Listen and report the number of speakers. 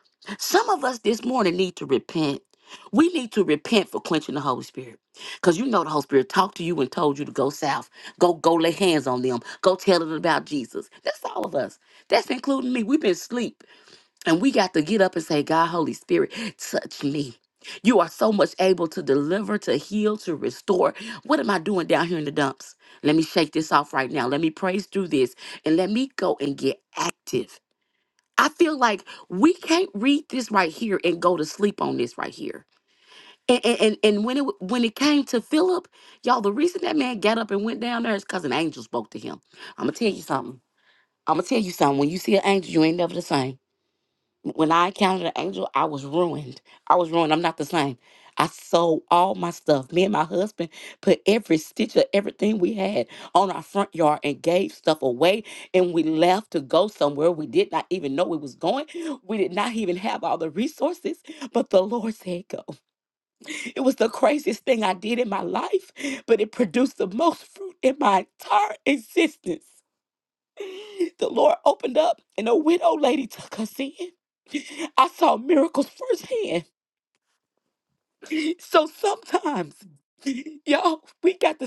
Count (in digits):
1